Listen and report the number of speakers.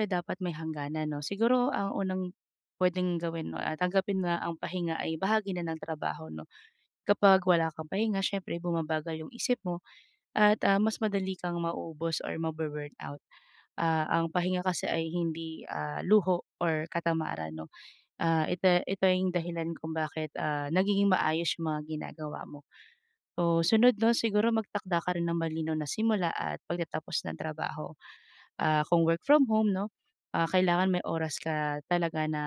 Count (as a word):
one